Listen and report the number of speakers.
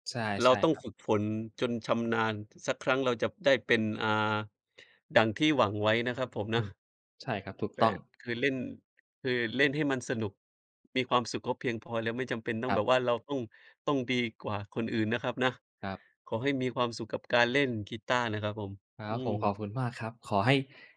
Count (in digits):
2